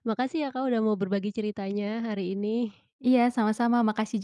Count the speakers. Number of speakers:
2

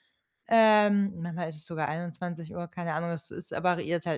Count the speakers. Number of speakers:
1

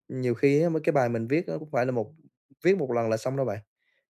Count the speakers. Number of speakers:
1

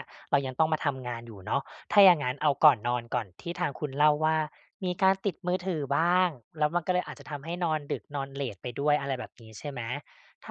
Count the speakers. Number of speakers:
1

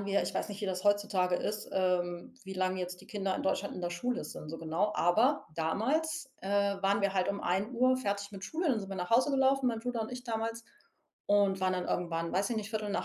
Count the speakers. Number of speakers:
1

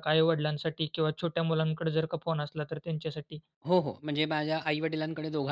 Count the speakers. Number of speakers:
2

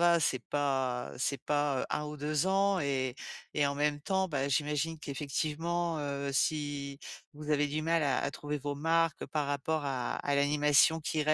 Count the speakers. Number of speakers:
1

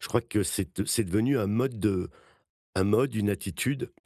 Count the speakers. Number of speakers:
1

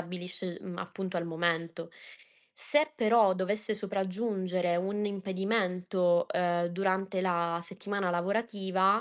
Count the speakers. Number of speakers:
1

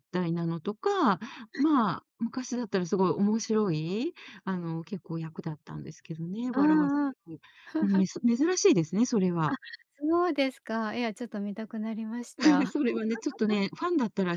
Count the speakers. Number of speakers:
2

